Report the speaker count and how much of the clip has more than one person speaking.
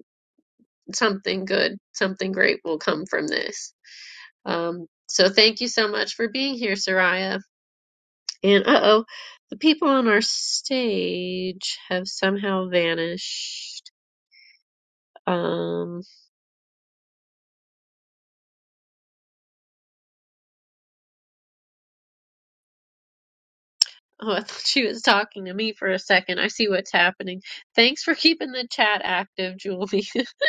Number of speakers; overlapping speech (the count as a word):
one, no overlap